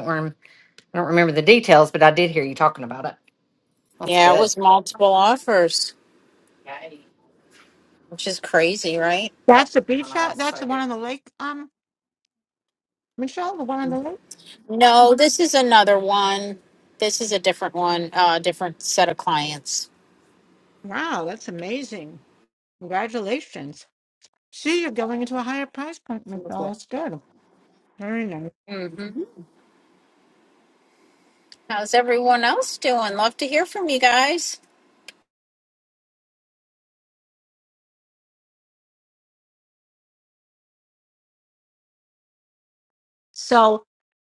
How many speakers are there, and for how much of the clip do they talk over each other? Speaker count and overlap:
3, about 3%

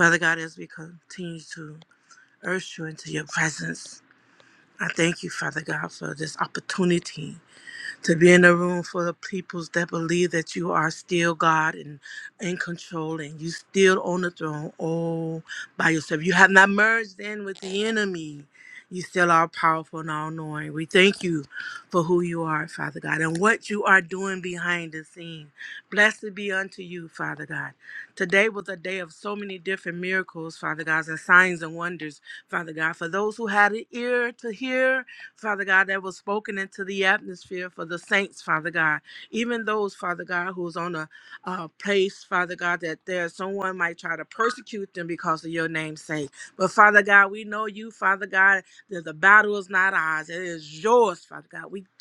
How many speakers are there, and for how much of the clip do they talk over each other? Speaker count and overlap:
1, no overlap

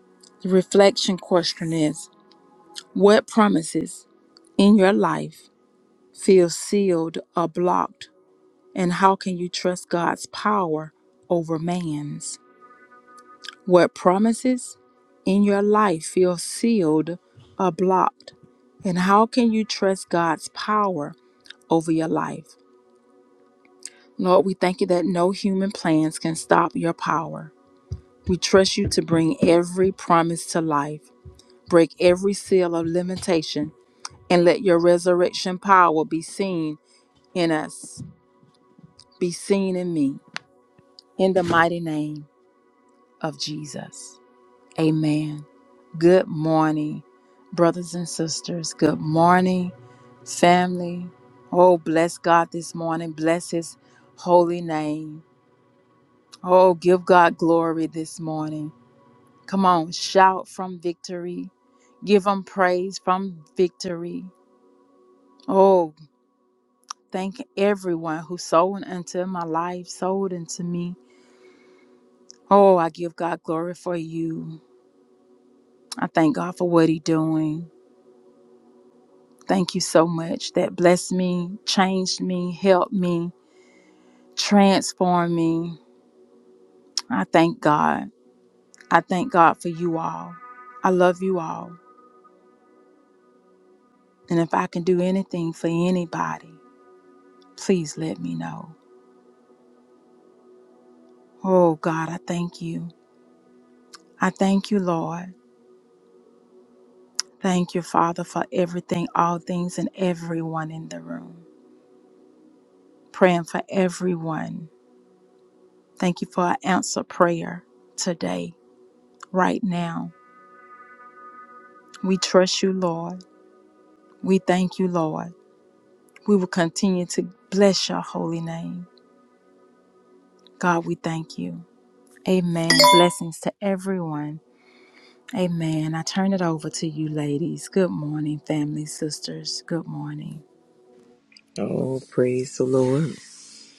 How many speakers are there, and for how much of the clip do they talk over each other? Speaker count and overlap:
2, no overlap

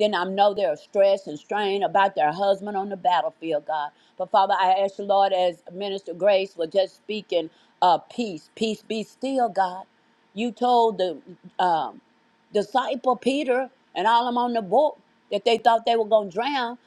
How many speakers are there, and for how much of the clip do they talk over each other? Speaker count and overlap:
1, no overlap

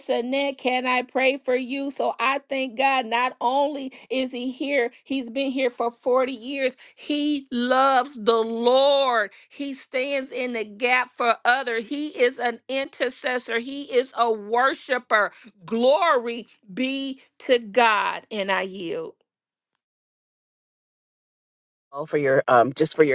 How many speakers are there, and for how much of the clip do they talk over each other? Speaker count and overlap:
2, no overlap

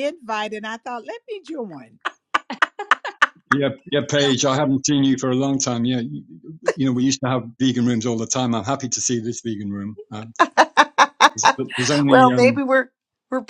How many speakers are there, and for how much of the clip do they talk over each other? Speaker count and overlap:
3, about 4%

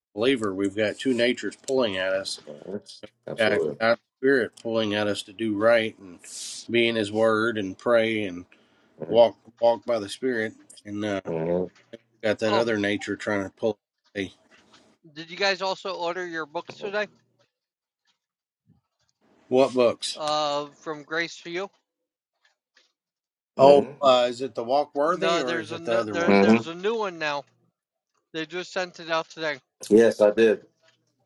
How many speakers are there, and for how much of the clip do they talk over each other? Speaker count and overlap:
3, about 8%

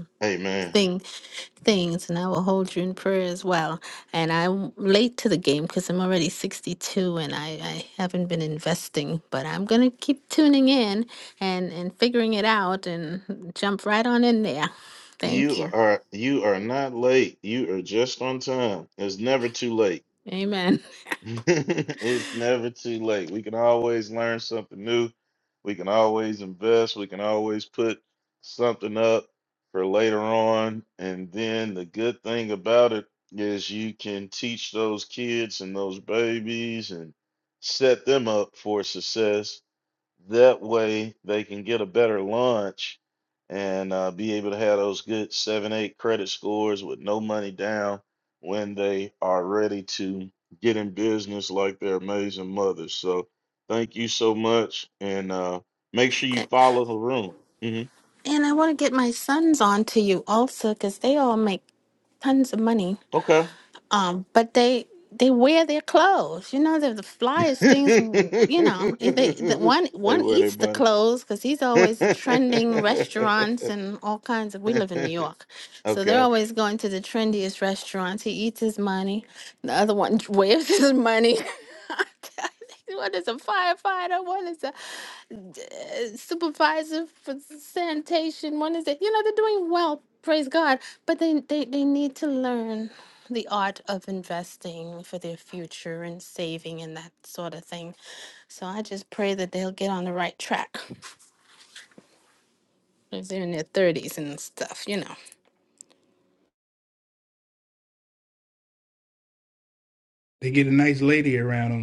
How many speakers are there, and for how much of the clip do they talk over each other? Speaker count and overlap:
3, about 1%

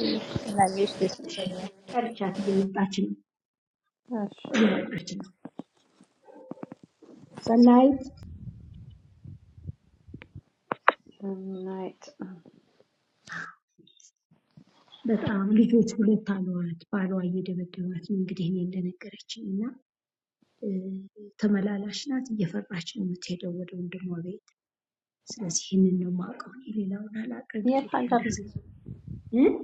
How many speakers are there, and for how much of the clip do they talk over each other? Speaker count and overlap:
3, about 2%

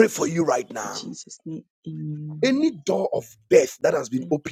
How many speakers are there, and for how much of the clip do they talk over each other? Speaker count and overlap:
2, about 6%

